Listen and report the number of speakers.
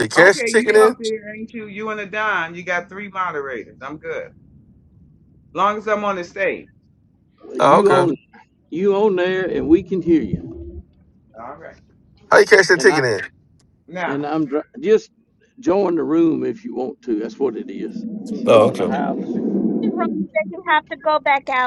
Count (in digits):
4